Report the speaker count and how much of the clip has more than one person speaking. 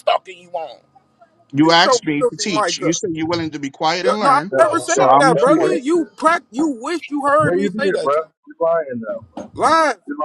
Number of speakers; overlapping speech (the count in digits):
3, about 43%